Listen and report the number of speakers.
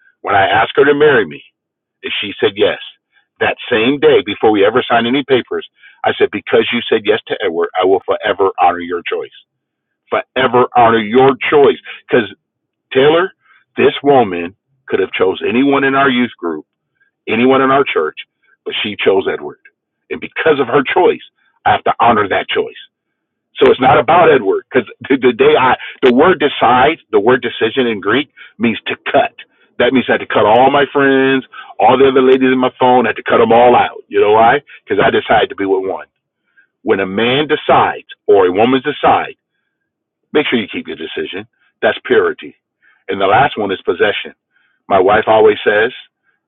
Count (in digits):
1